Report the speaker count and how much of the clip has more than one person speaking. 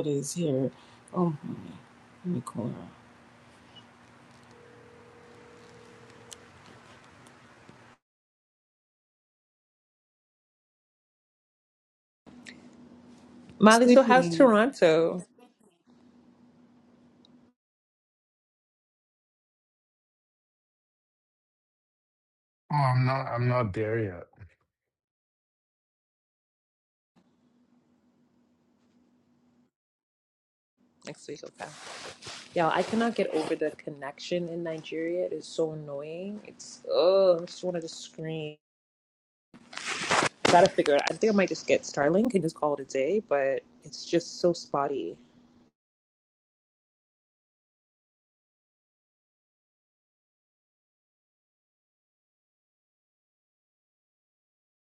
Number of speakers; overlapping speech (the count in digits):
3, about 1%